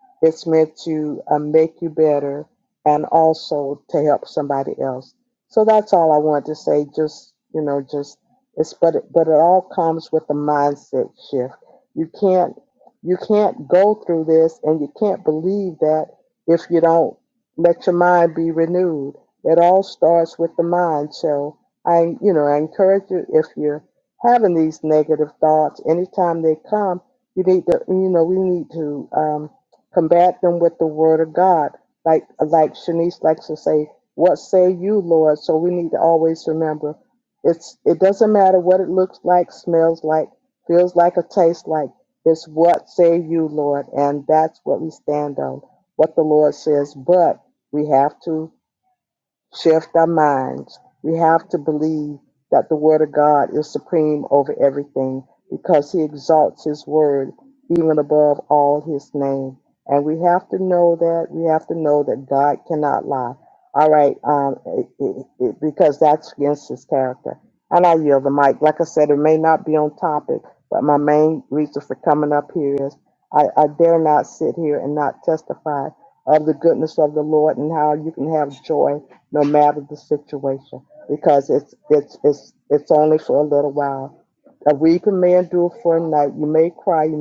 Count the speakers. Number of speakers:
one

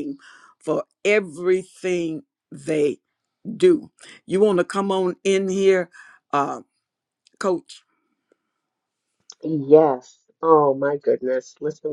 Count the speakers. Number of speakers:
two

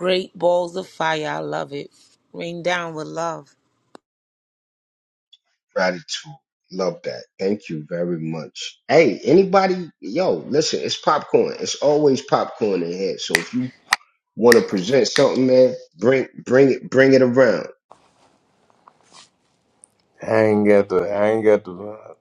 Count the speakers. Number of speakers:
three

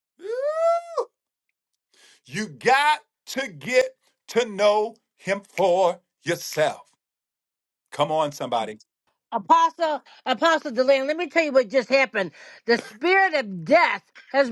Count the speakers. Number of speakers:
two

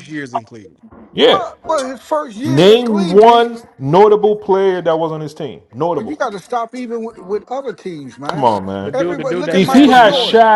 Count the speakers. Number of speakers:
three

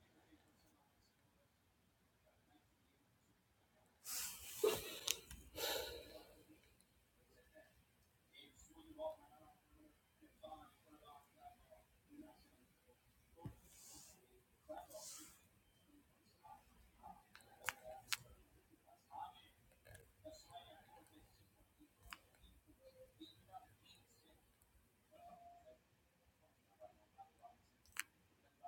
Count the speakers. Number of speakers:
zero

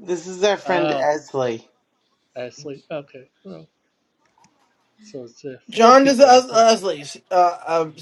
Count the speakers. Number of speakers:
three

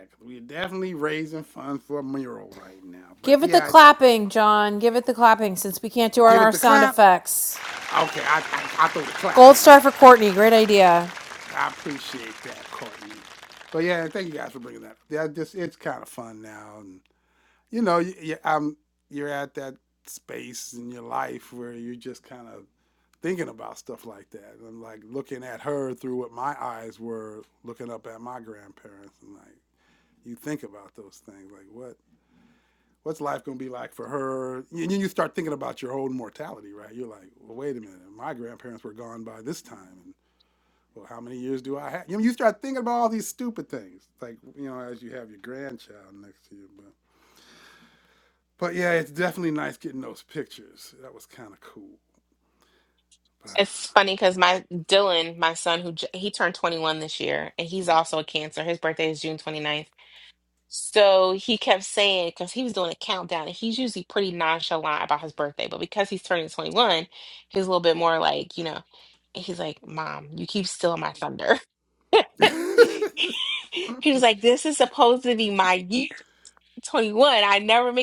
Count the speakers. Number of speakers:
three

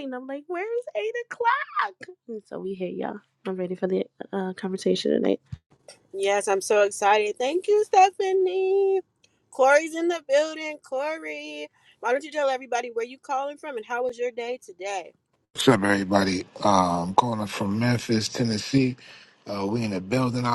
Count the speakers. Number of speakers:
three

